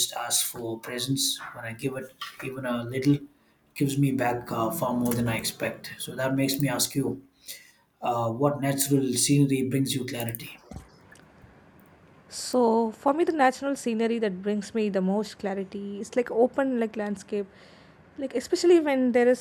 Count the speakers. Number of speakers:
2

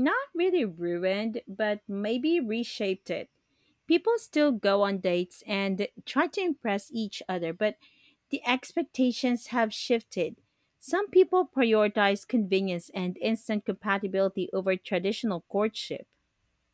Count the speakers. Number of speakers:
1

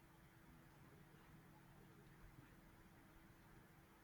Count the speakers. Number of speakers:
0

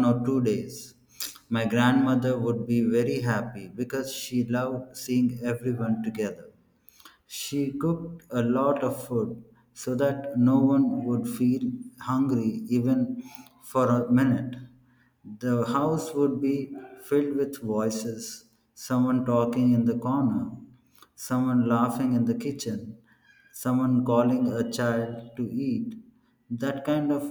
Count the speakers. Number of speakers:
1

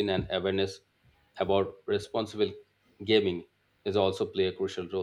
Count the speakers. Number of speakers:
1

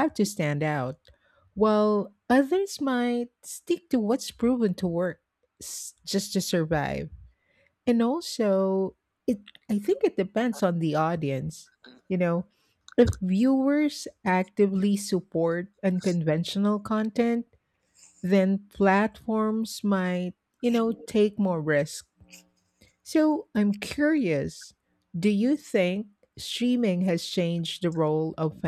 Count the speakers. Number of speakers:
1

